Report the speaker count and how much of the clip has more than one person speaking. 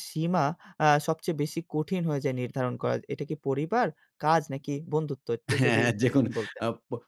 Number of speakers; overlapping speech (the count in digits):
2, about 8%